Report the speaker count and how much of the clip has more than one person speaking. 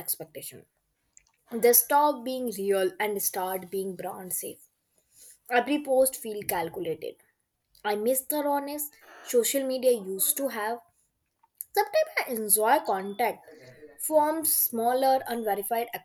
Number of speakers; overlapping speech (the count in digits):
1, no overlap